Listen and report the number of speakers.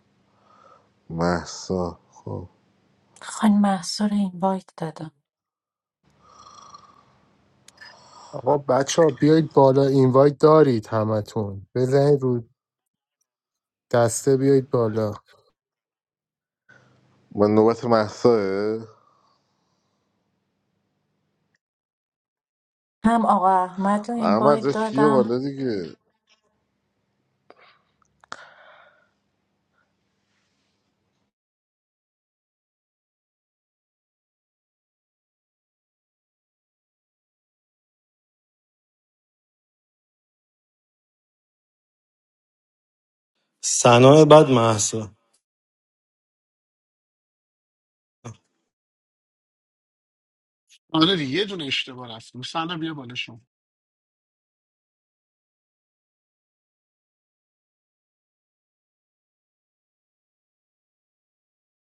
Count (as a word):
five